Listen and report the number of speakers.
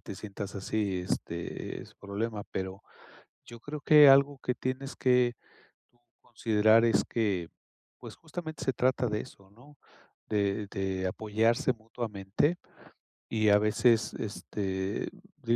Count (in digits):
1